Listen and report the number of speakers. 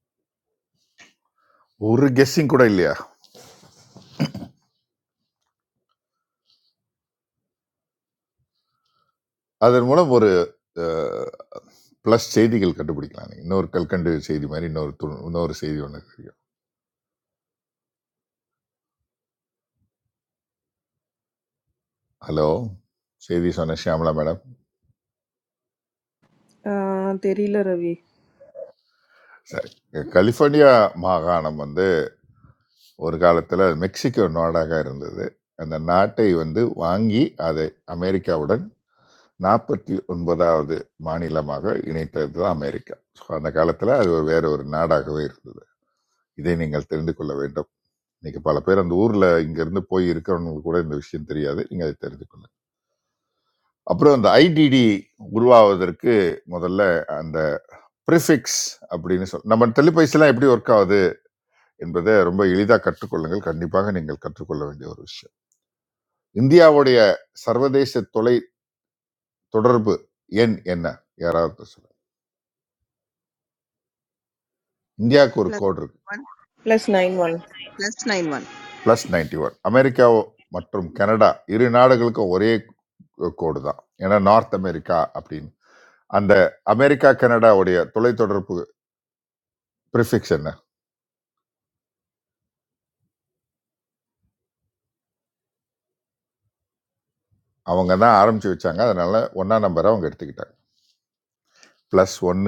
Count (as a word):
three